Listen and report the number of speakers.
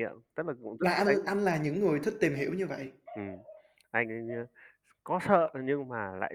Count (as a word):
two